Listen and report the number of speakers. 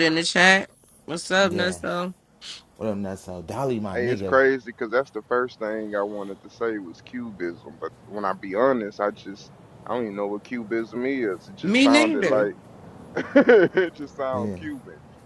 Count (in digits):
3